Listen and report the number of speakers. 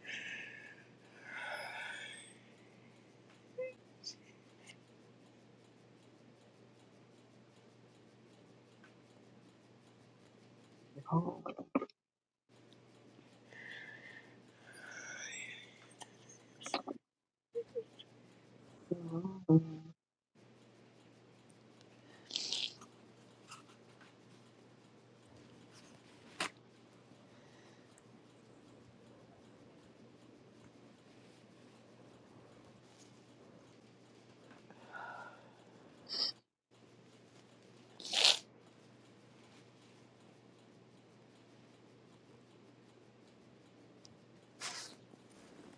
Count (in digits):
0